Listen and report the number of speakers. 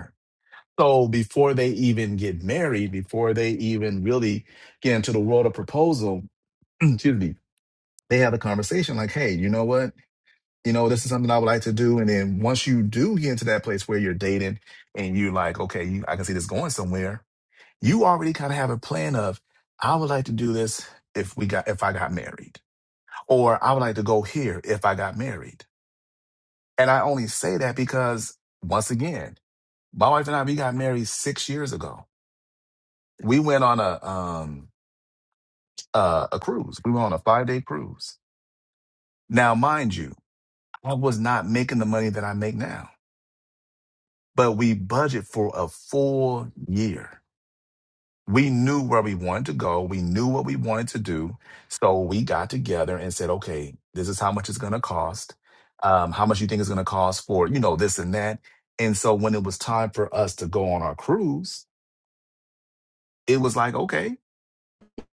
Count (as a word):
one